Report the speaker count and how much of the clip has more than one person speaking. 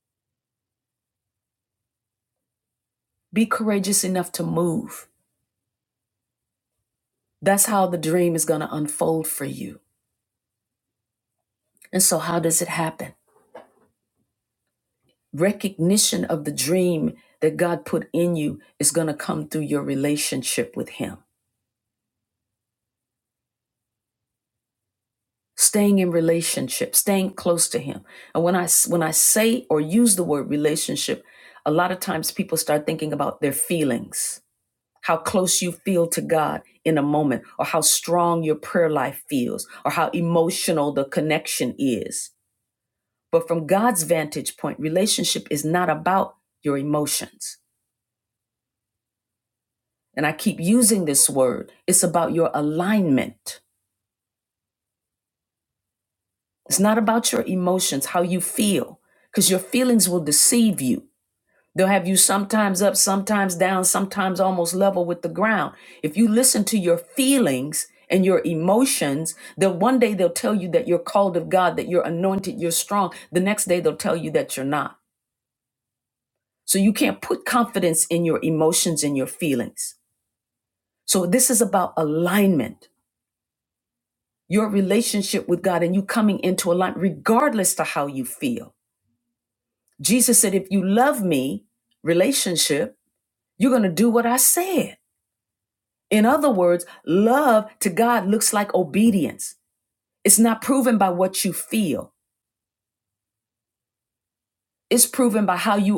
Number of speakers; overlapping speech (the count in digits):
1, no overlap